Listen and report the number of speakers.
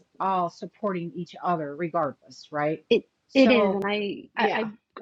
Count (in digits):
2